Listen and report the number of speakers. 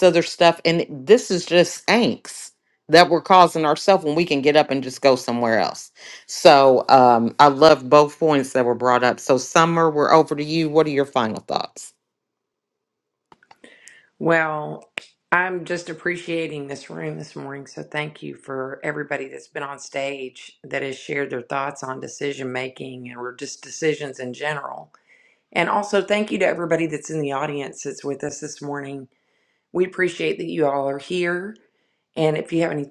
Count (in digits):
2